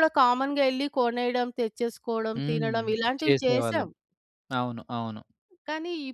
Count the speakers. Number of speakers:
2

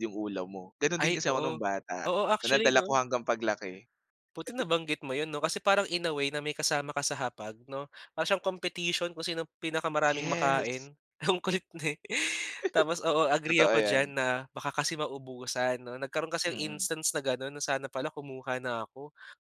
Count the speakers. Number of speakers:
2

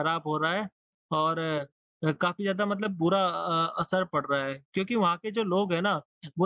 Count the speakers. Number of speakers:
1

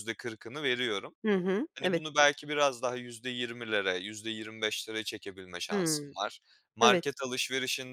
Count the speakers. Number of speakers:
2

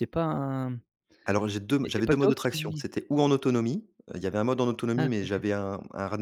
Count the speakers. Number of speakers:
2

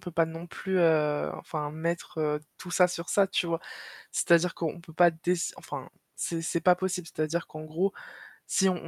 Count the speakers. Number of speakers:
1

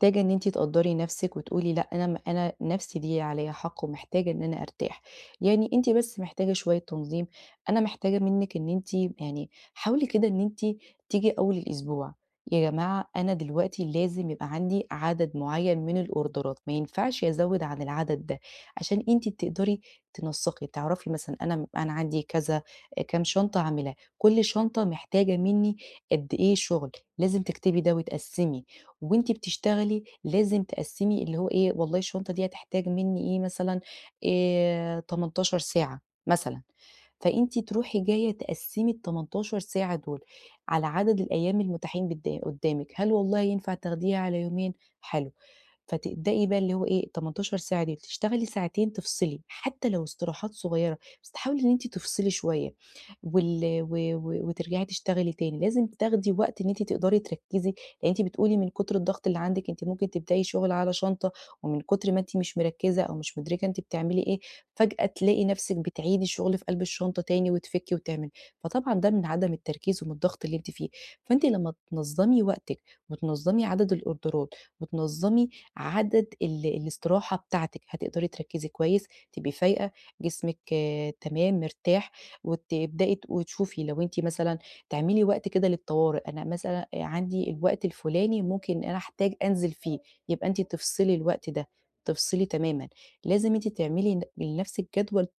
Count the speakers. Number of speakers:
1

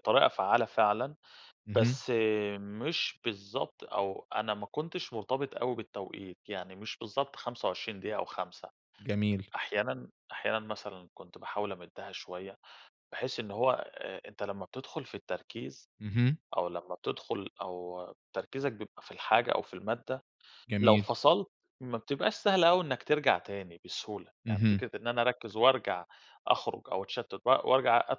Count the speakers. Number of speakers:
2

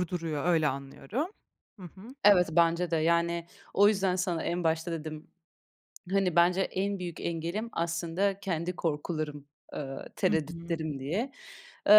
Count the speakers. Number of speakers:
2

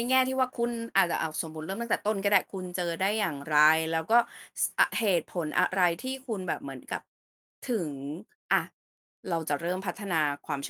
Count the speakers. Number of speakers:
1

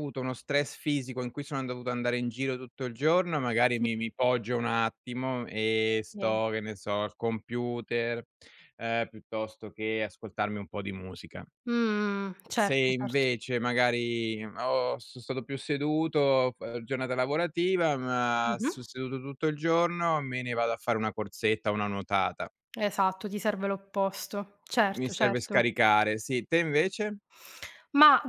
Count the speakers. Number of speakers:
2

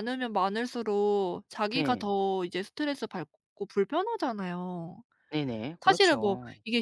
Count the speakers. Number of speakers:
2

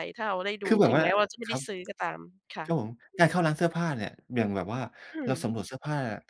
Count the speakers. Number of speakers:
2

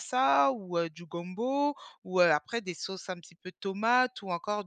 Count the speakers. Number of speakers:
1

